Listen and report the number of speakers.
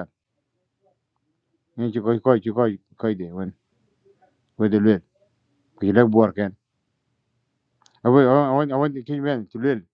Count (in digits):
1